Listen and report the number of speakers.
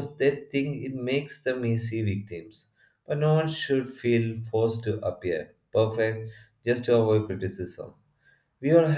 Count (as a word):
one